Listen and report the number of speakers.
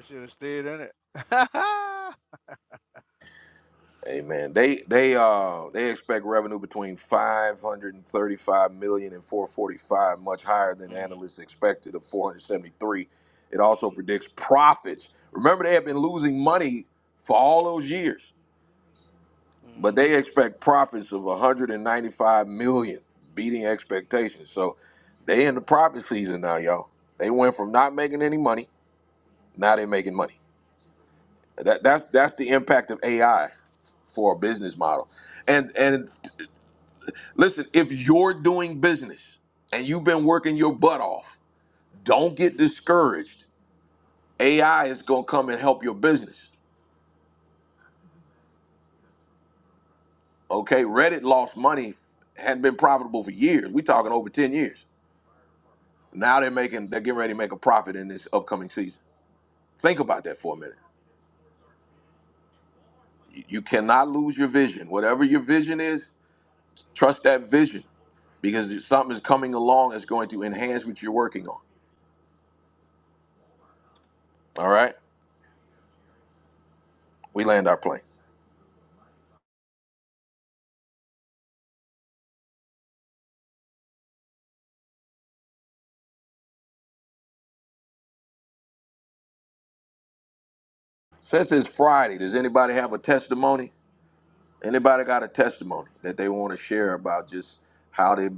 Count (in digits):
2